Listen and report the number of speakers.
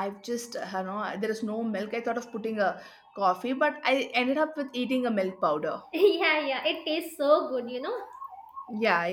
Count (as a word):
two